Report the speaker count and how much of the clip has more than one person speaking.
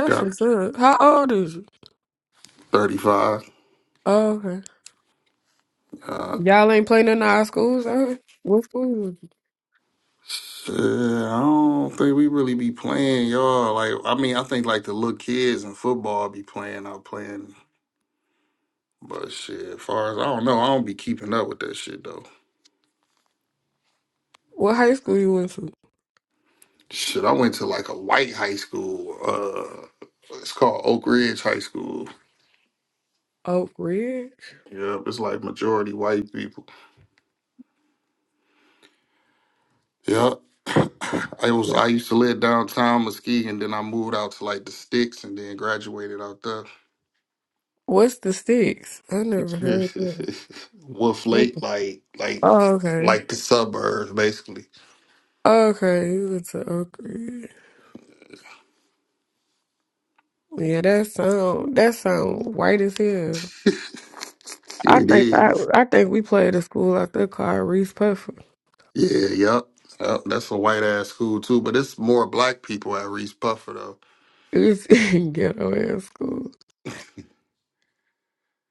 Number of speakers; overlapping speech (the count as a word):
two, about 2%